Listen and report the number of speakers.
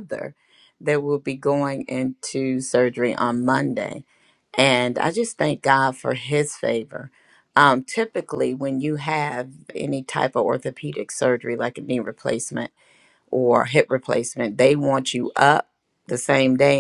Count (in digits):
1